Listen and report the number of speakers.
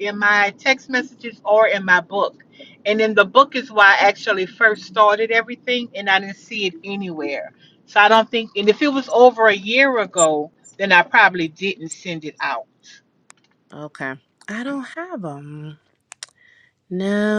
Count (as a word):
two